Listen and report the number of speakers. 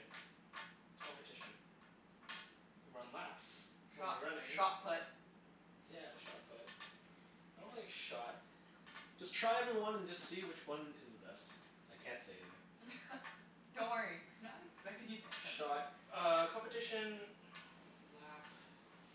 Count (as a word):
three